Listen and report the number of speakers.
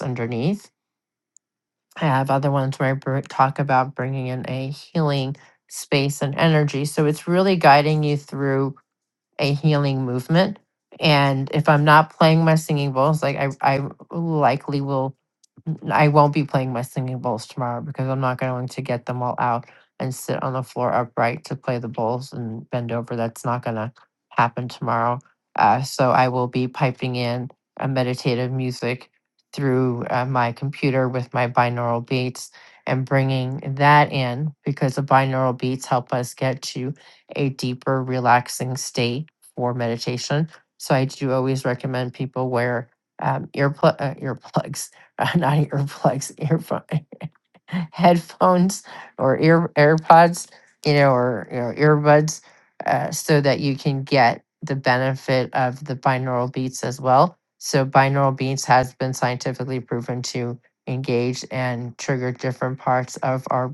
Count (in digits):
1